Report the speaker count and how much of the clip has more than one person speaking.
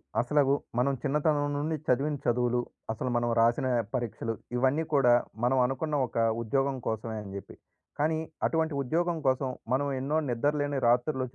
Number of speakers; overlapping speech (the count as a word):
one, no overlap